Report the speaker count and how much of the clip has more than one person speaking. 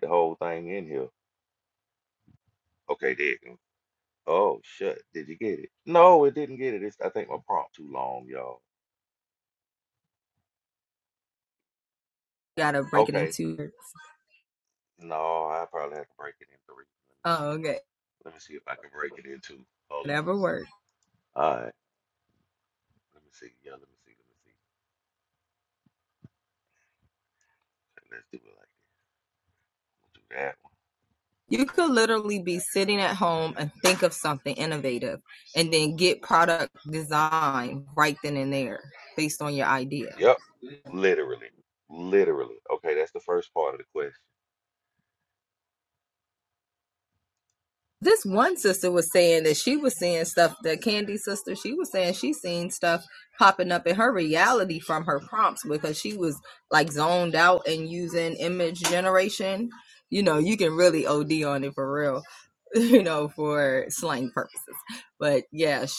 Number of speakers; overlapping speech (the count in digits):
2, about 1%